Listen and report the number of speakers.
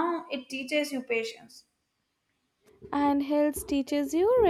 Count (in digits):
2